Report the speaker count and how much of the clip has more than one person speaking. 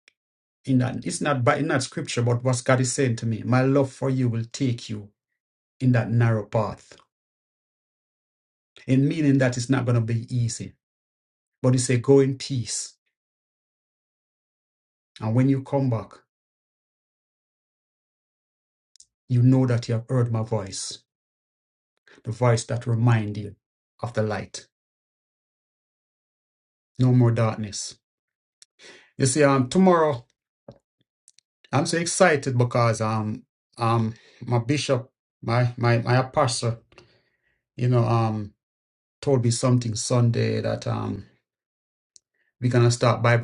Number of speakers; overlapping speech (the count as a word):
one, no overlap